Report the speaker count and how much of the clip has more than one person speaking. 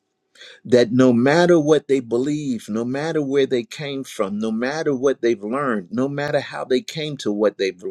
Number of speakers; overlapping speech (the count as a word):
one, no overlap